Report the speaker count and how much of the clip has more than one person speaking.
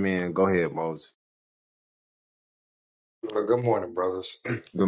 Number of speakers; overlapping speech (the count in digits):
2, no overlap